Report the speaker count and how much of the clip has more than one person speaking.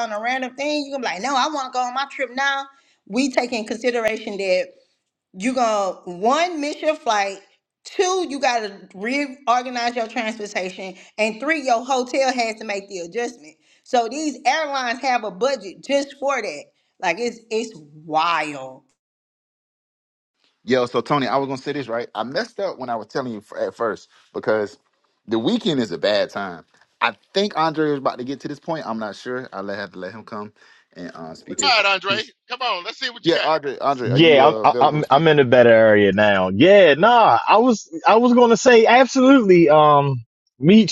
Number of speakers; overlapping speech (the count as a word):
four, about 5%